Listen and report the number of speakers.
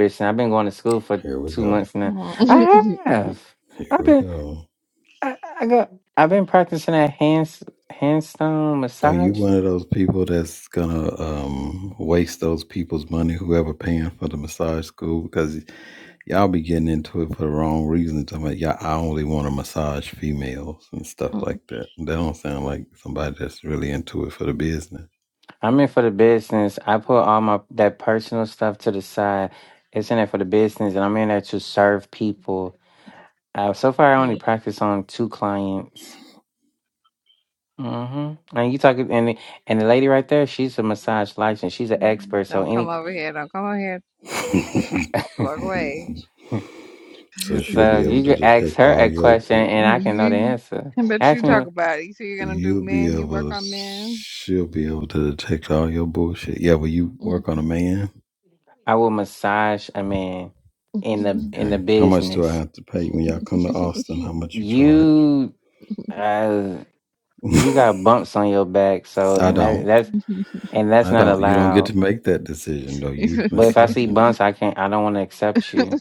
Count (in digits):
3